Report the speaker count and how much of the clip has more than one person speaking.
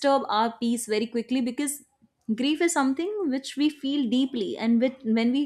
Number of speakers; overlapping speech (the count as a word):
one, no overlap